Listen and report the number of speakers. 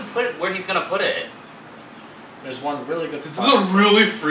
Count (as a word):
three